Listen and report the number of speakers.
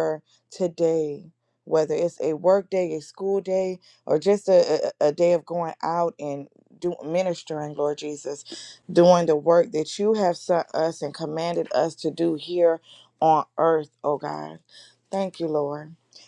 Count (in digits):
1